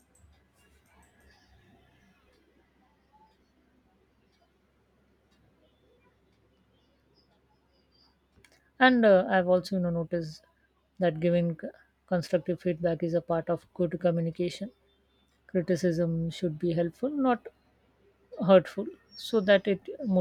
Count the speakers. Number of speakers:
one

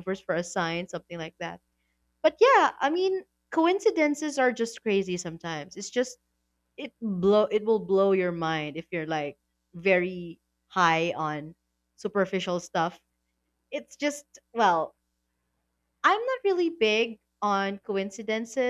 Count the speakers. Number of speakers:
one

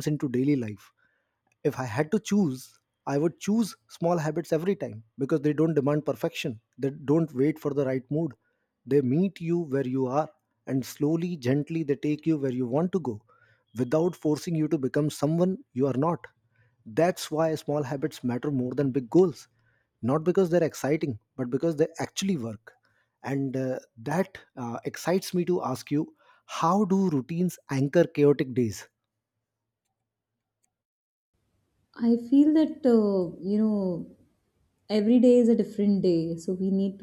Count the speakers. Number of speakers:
two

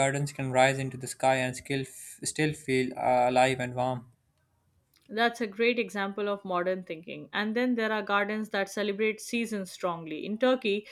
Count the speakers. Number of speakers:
two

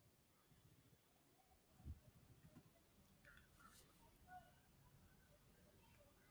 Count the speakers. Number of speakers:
zero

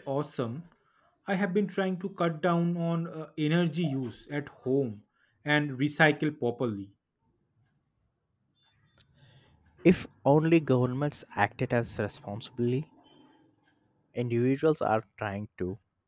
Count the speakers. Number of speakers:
two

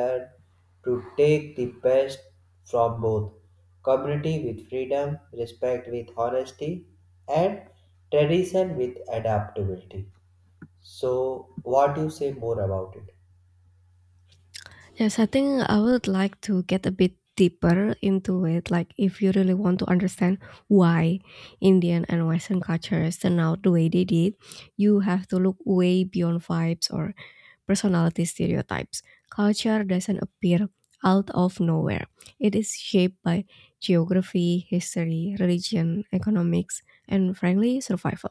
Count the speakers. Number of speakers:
two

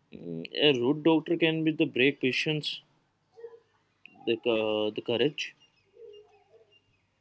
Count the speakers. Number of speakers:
one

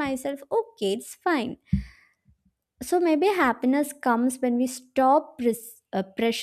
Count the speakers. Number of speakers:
one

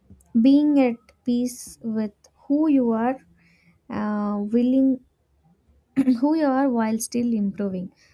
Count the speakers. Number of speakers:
one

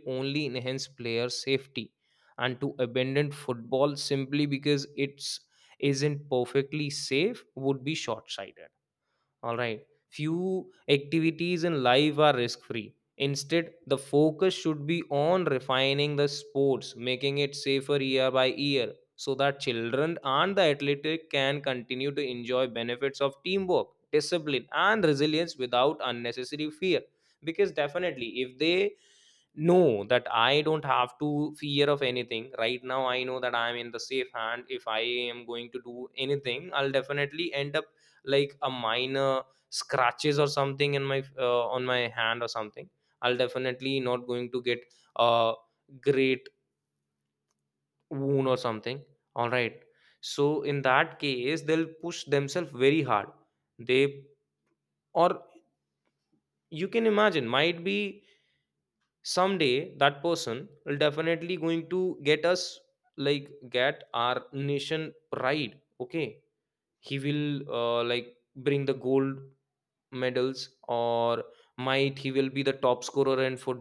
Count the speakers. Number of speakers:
one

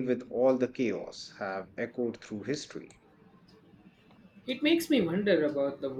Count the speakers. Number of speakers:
two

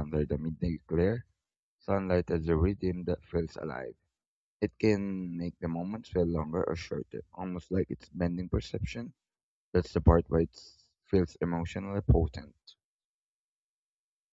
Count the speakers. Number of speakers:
one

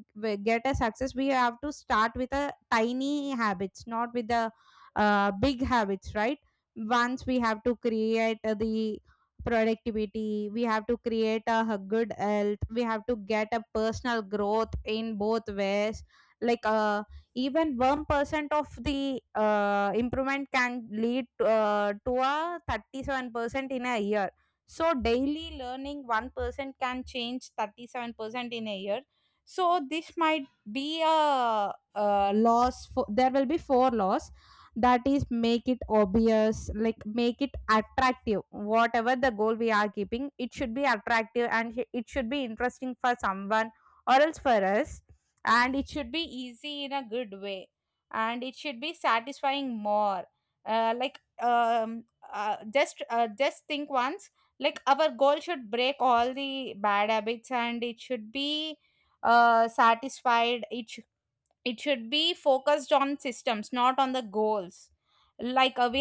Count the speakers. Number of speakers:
one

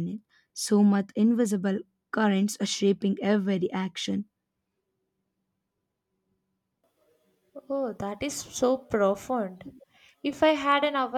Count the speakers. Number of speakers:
two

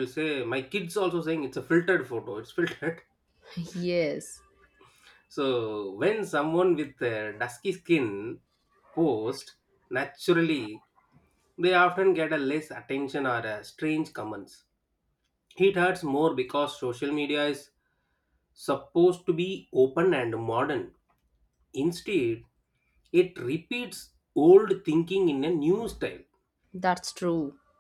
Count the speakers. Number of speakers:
two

